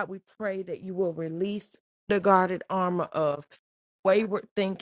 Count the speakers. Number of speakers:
one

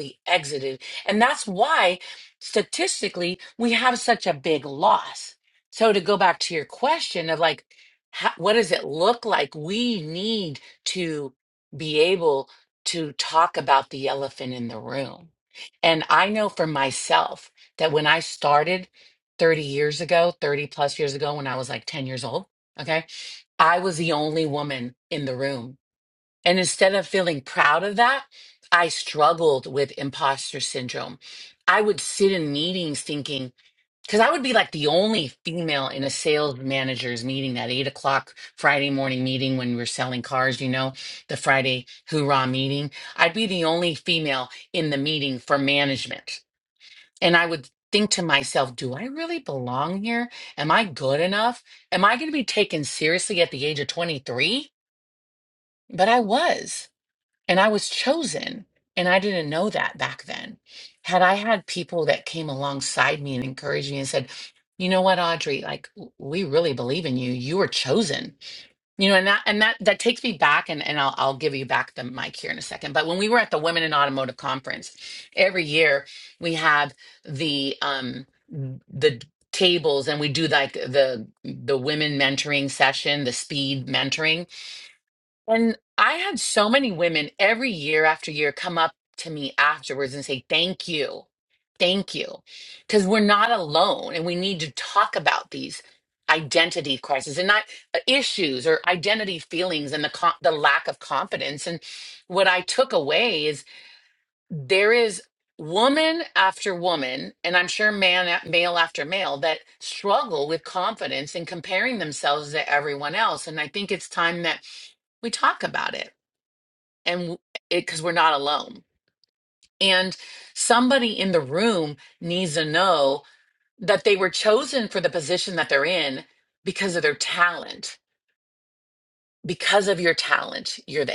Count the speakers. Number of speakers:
one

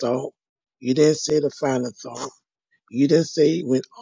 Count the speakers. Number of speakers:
one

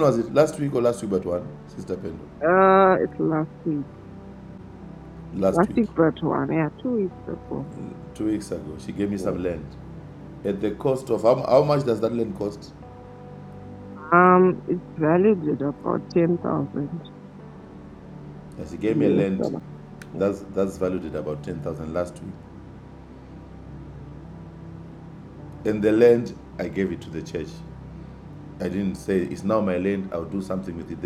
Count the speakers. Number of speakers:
two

